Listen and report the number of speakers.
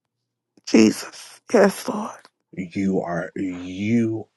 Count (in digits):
2